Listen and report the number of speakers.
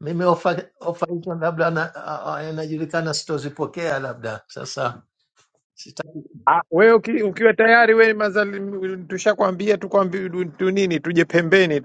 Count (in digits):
2